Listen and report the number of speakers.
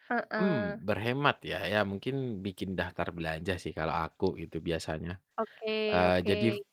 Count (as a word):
two